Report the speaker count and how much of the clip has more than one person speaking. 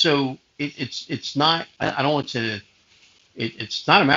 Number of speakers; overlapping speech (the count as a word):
one, no overlap